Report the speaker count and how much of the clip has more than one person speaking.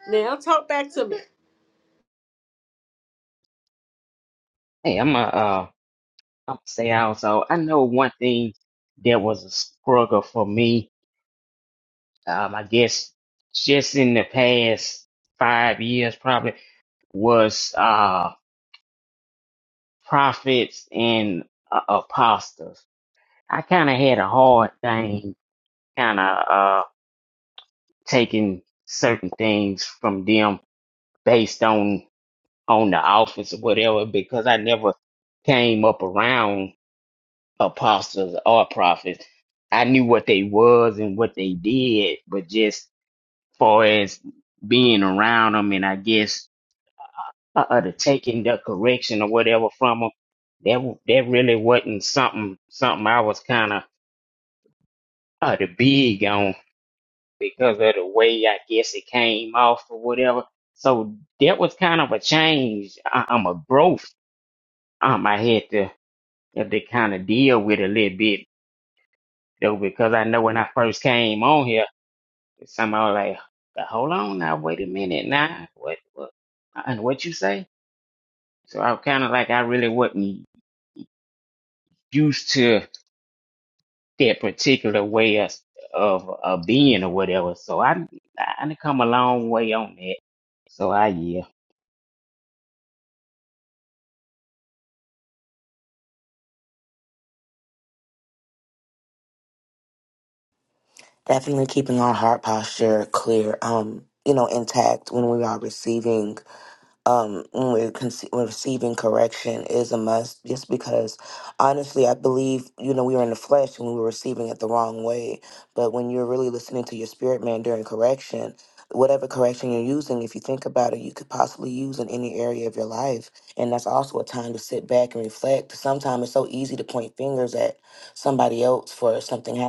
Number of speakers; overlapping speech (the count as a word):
three, no overlap